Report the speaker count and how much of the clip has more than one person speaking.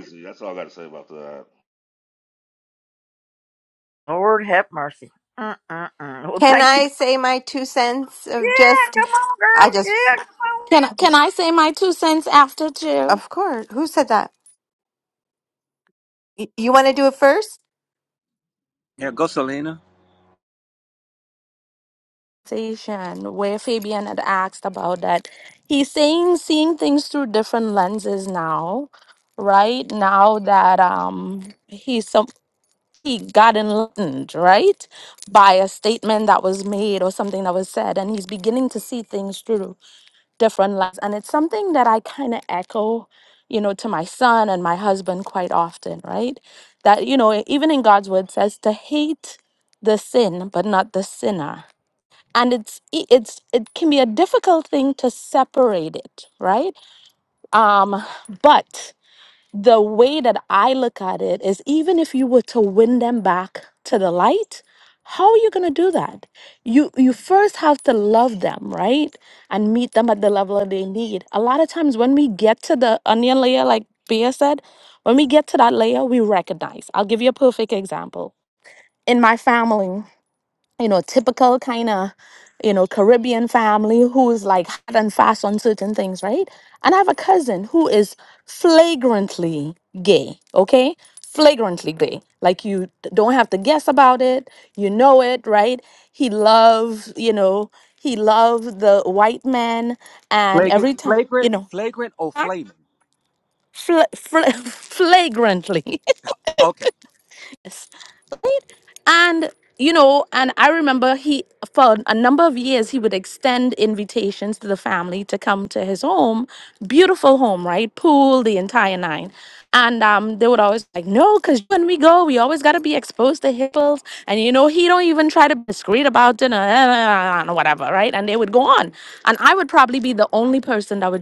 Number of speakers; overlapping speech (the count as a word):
five, about 2%